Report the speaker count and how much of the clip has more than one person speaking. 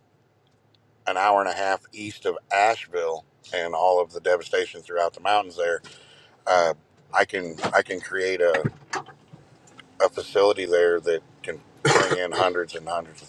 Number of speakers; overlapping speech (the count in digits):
1, no overlap